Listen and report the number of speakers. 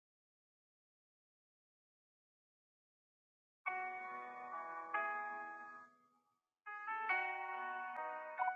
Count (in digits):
0